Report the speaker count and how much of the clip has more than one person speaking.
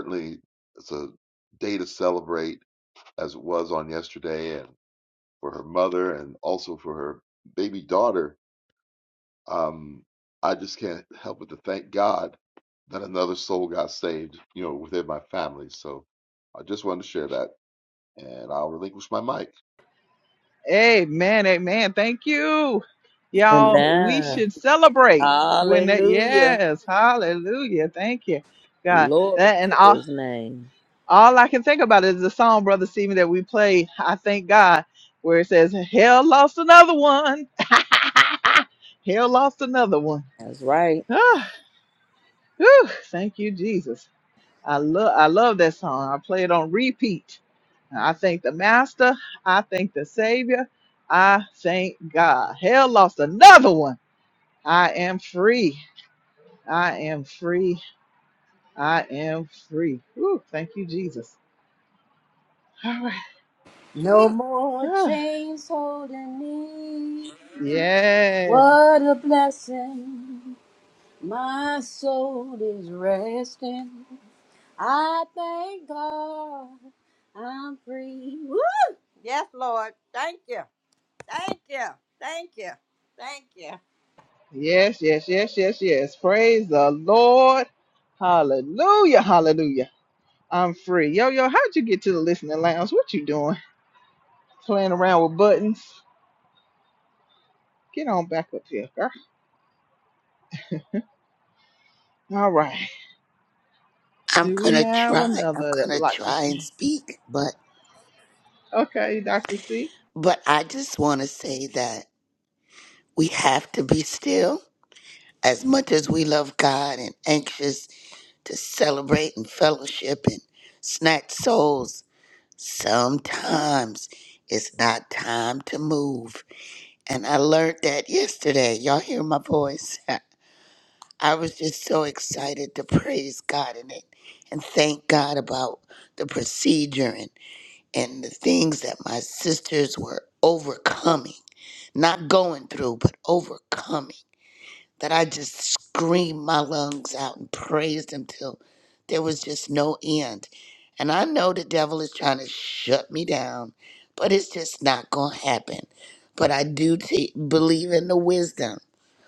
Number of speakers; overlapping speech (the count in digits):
5, about 3%